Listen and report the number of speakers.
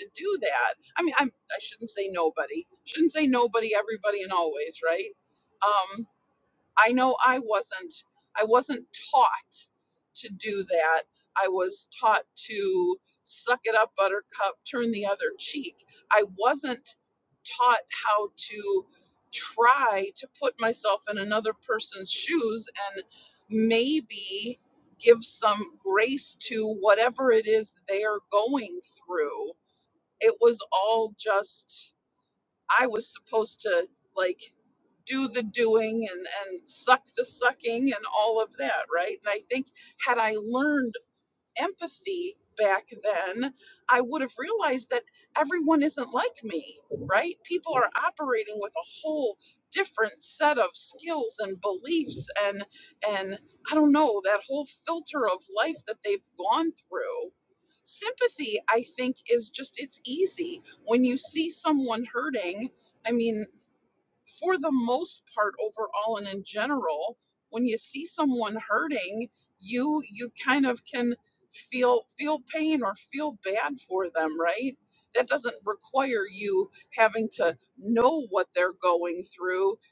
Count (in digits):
1